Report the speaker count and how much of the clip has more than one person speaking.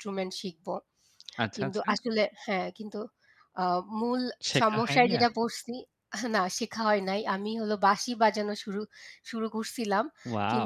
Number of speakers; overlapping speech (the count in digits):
2, about 12%